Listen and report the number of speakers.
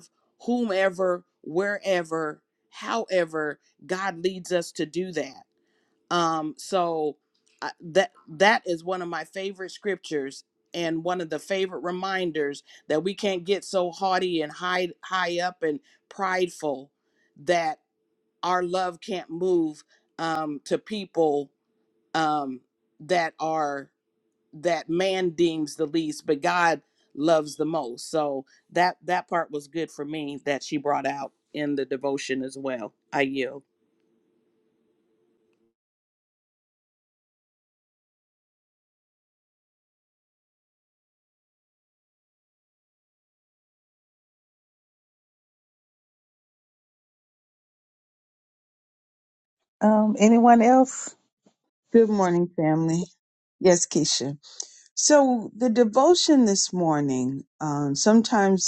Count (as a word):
three